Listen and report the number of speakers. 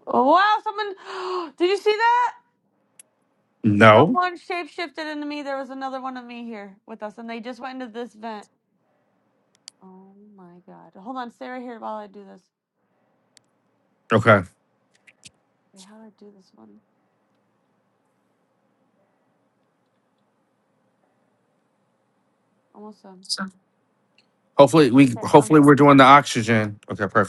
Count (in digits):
2